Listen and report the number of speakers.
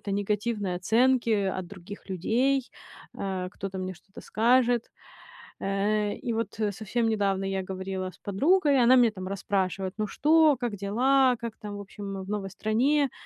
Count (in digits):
1